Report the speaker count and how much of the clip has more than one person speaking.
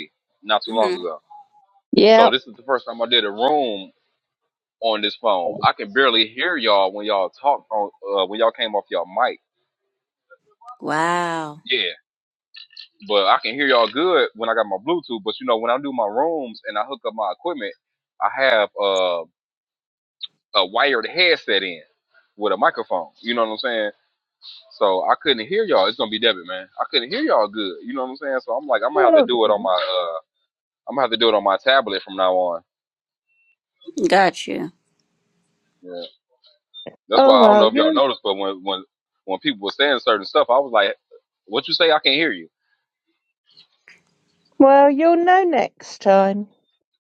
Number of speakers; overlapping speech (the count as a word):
three, about 4%